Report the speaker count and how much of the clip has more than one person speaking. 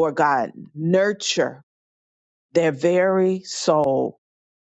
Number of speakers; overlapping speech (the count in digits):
1, no overlap